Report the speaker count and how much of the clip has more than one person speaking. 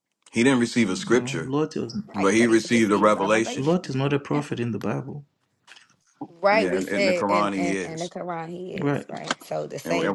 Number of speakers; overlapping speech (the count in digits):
3, about 45%